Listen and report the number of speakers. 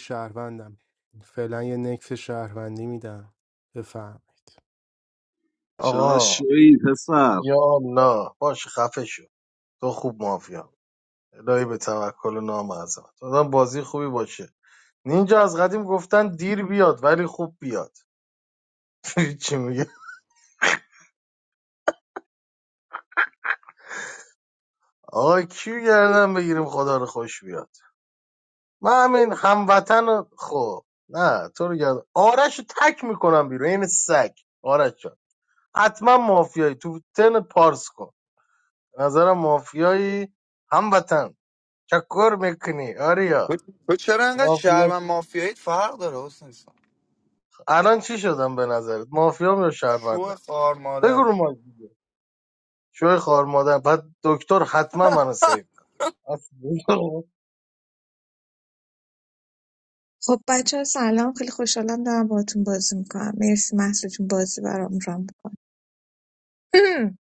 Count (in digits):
5